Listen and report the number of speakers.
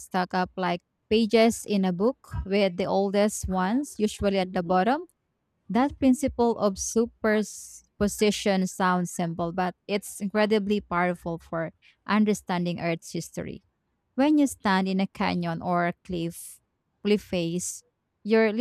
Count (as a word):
one